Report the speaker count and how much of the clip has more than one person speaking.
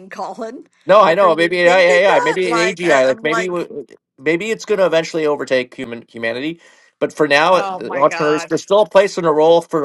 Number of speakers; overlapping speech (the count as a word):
two, about 34%